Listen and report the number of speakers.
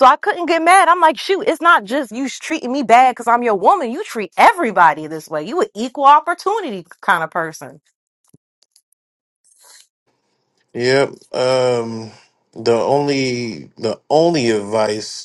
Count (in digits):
2